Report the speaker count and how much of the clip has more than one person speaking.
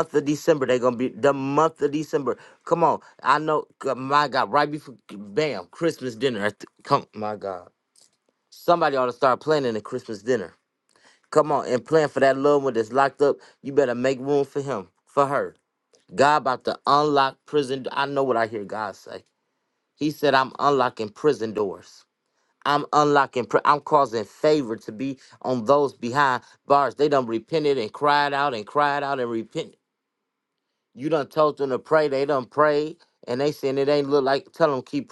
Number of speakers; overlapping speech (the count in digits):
1, no overlap